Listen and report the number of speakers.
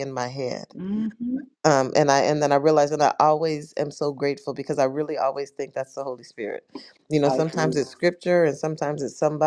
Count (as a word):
two